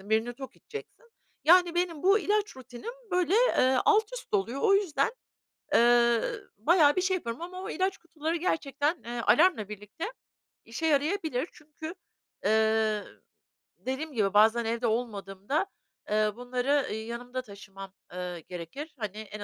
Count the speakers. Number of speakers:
1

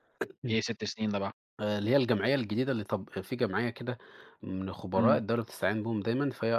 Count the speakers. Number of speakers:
2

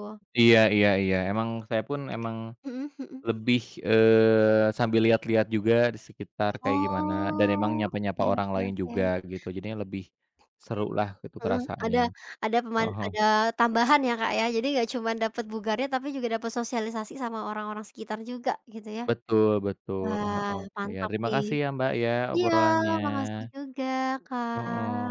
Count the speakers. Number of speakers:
2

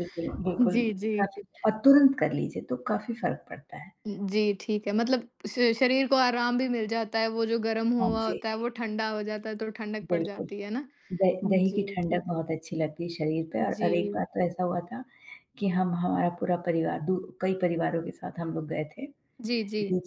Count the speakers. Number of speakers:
2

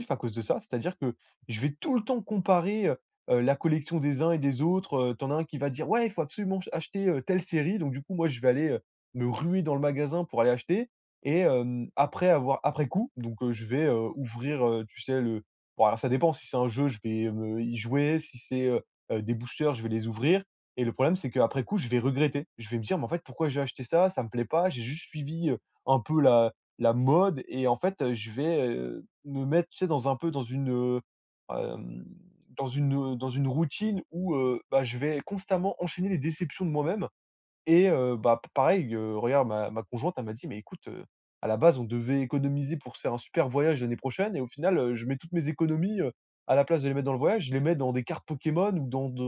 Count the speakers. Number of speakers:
1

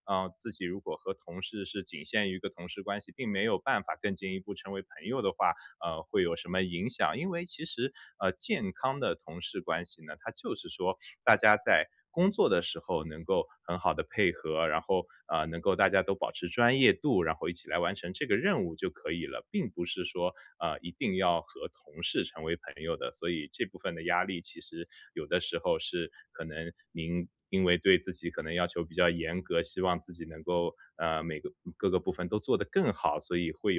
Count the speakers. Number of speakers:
1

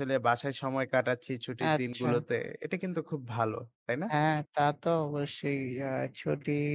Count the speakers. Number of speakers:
2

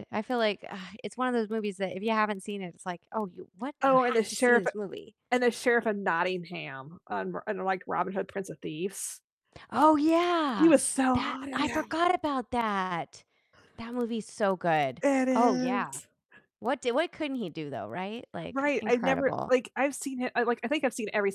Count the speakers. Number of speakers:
2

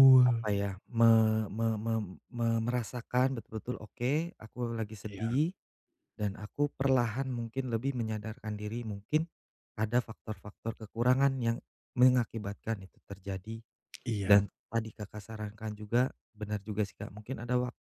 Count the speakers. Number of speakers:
2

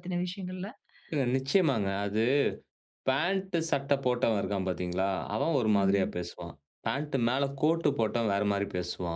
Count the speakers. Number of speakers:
2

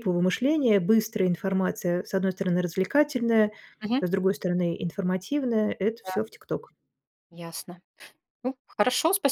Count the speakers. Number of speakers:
2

